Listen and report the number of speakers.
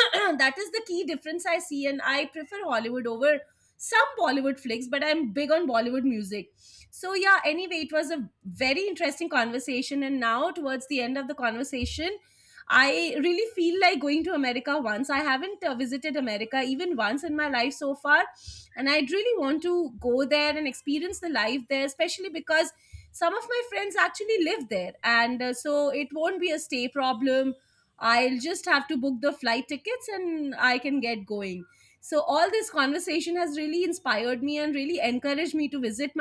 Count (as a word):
one